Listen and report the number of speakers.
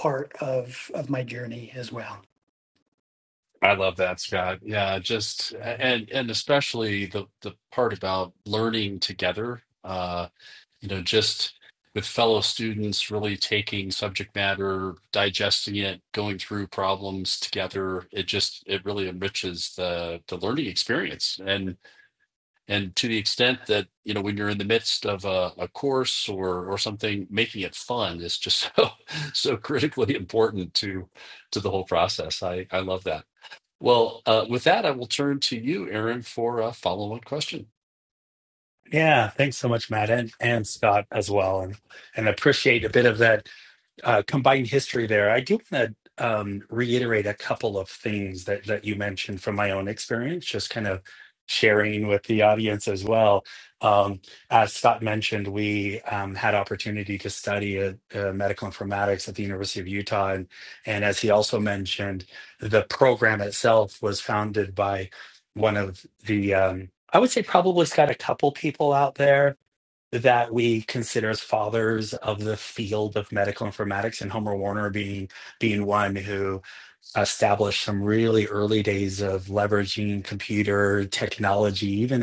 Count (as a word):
three